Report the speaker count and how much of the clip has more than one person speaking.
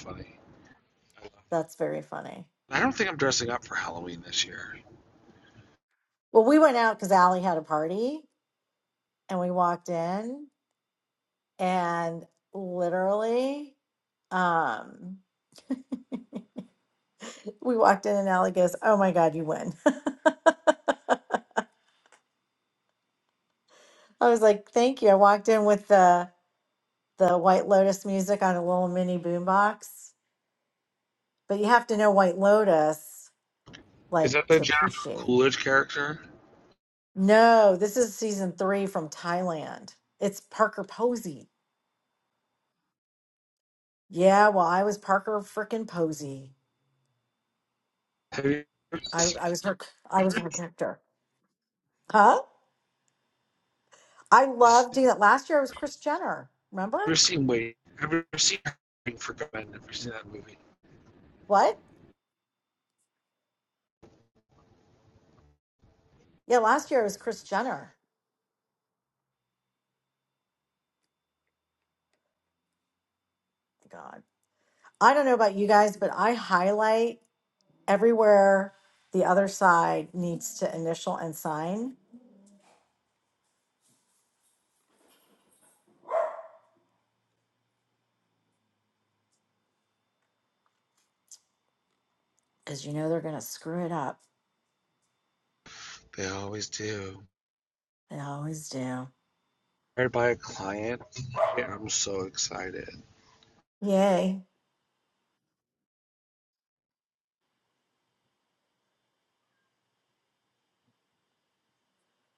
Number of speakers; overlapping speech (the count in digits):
2, about 1%